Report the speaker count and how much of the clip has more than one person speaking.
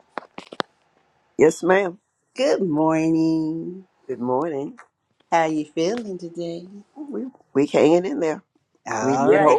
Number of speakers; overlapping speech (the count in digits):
2, about 6%